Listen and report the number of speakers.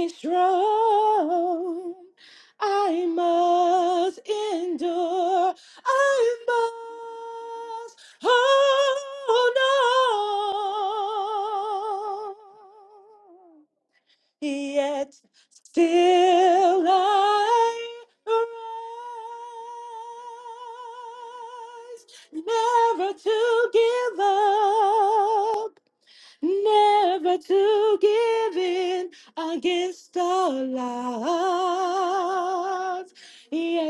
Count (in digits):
1